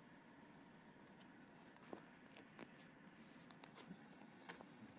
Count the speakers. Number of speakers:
0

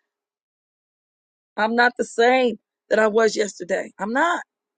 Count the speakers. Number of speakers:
1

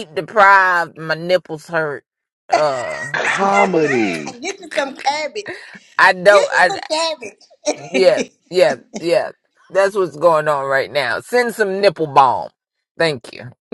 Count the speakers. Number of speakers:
3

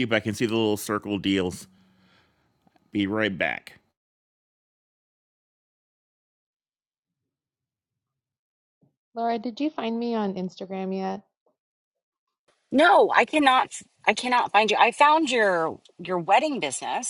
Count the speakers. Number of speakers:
3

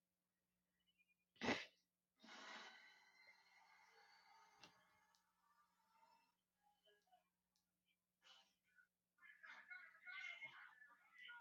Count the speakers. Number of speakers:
0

